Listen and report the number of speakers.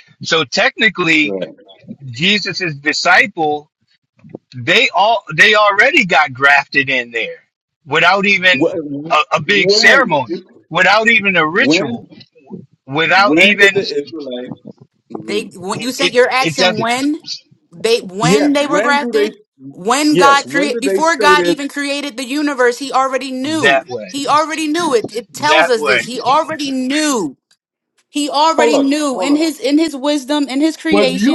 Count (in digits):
3